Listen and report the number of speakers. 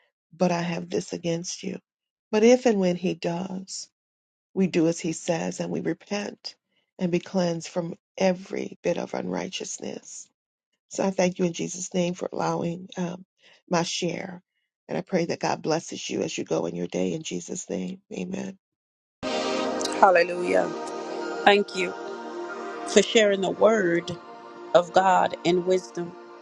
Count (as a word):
two